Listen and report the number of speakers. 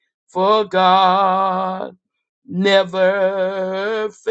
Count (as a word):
one